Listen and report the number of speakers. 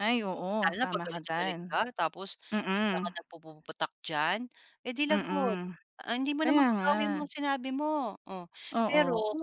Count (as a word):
two